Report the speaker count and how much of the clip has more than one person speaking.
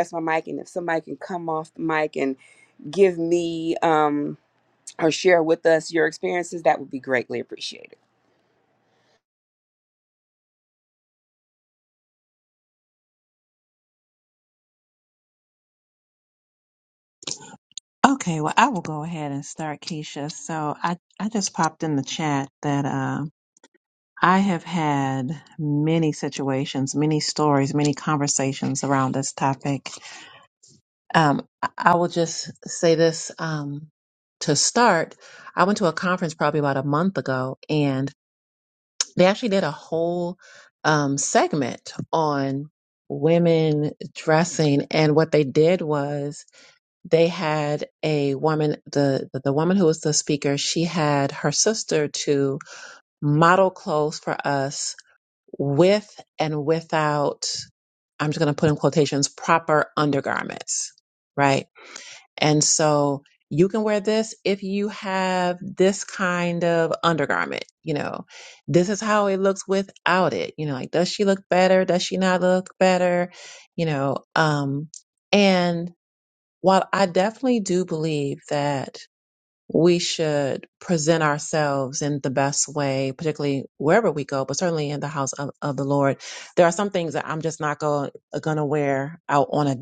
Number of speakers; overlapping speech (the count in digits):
2, no overlap